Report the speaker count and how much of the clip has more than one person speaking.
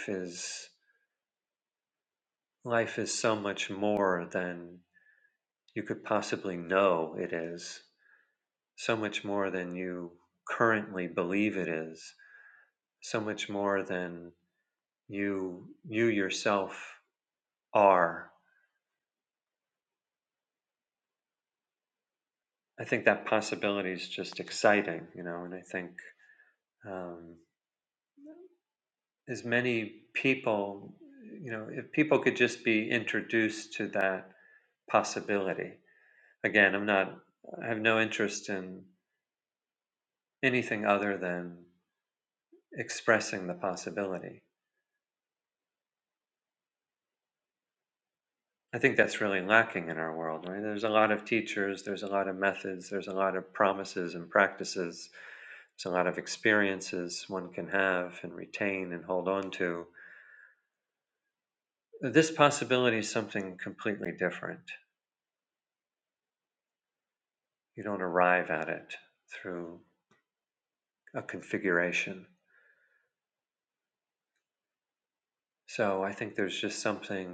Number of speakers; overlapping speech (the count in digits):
1, no overlap